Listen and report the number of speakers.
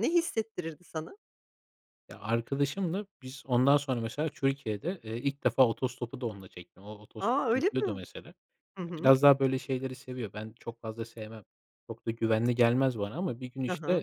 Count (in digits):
2